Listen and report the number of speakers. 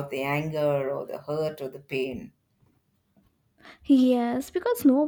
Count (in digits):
2